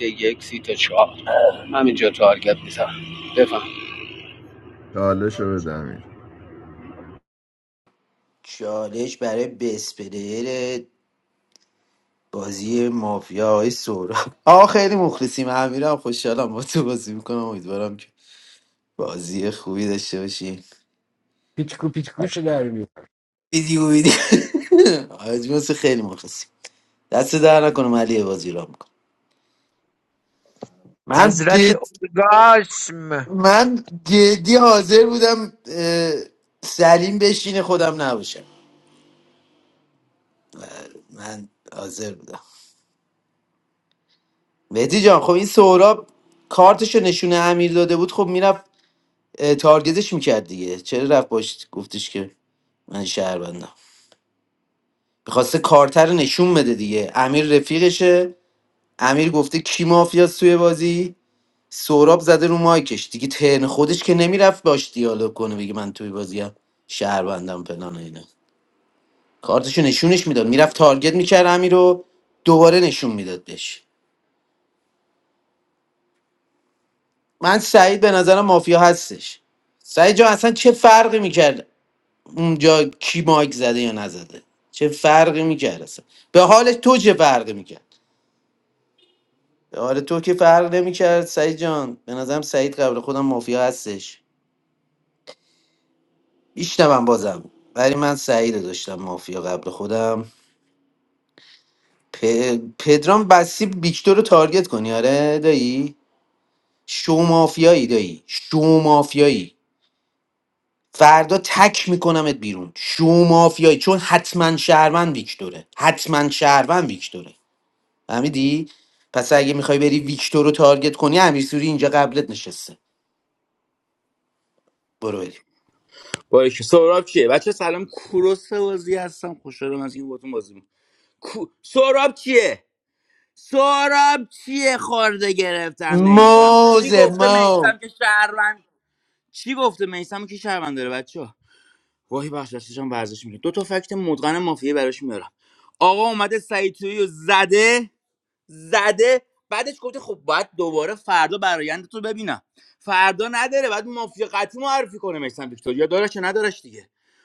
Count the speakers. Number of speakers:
six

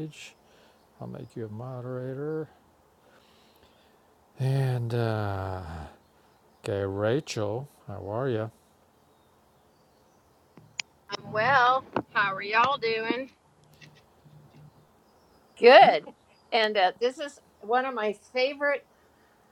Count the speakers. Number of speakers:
three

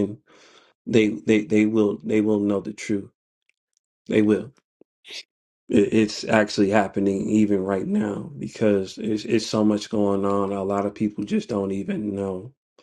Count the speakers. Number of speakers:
one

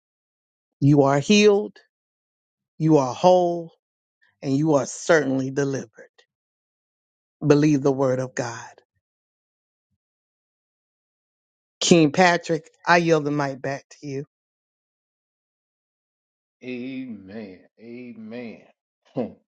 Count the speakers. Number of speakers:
two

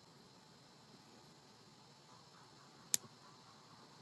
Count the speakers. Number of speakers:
zero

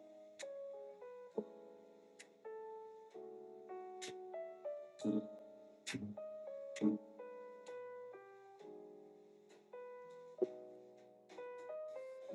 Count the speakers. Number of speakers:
zero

